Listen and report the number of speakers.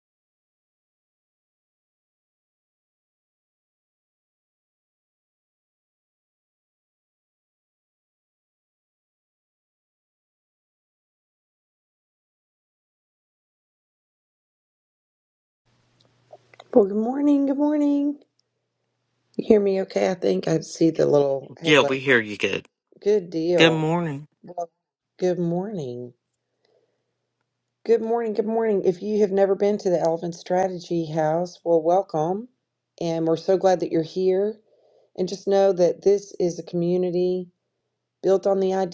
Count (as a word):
two